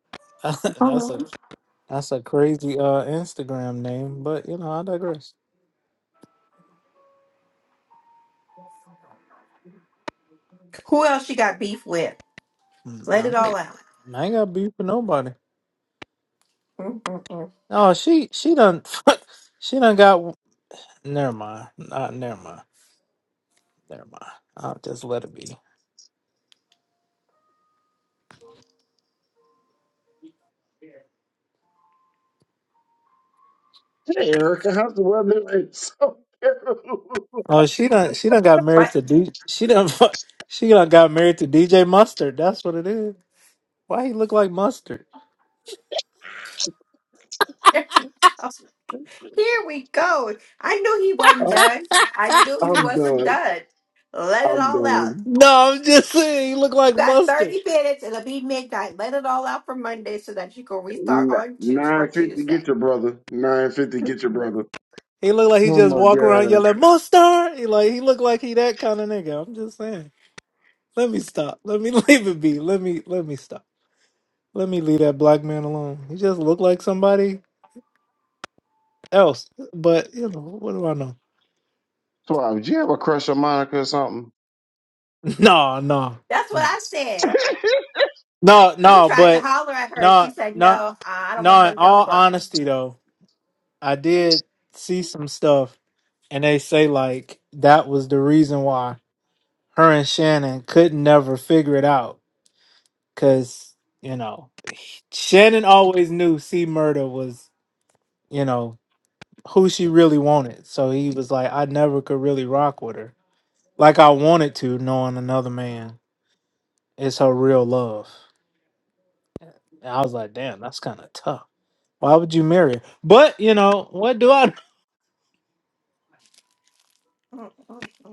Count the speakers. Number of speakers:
three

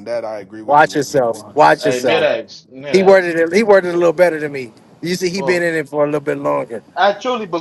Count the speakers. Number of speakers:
three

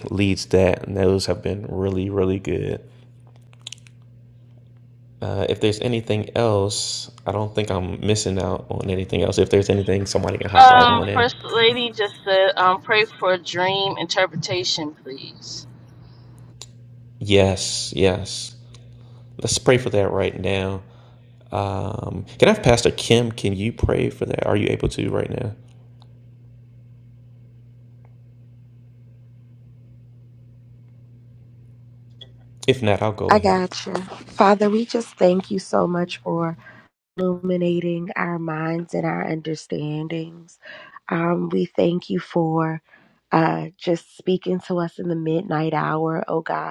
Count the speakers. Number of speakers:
three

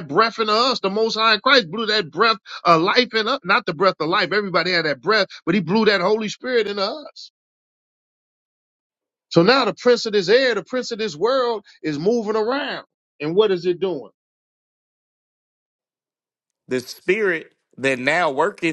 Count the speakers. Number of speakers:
two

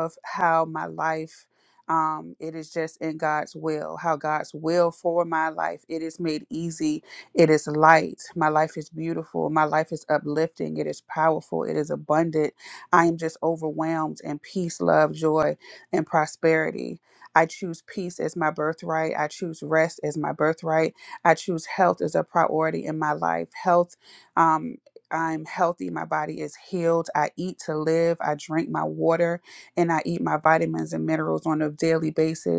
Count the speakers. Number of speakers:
one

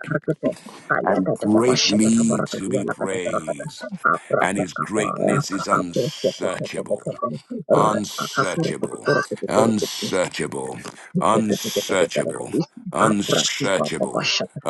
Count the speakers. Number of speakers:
two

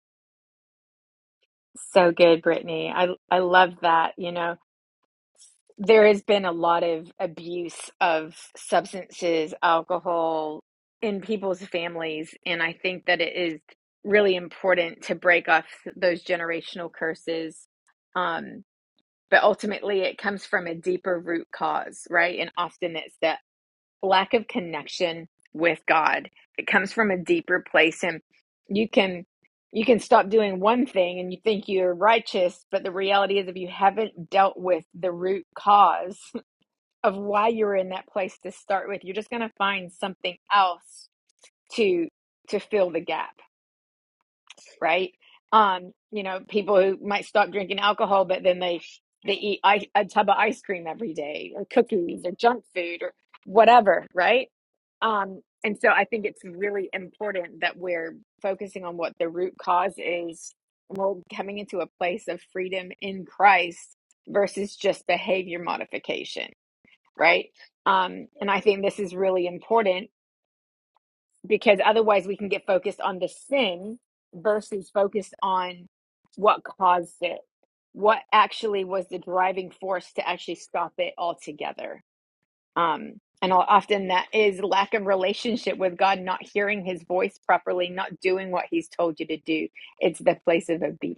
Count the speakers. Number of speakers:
one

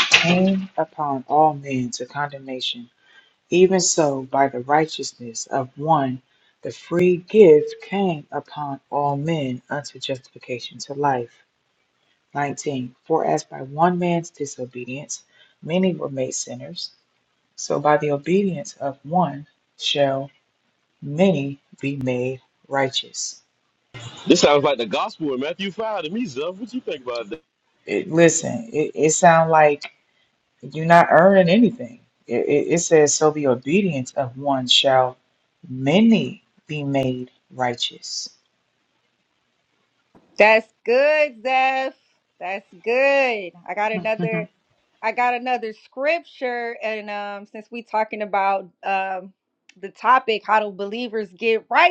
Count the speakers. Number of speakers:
three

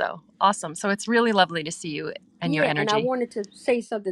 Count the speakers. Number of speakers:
two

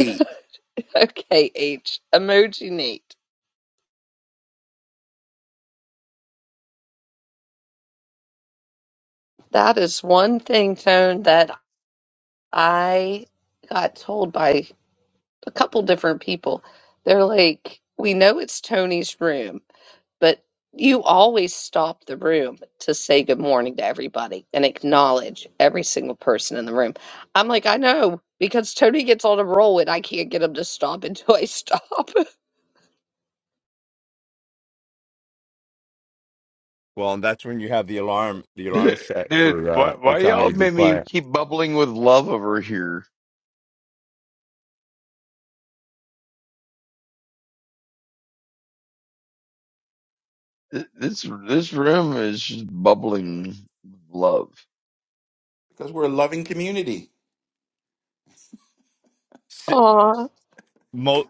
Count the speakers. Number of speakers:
four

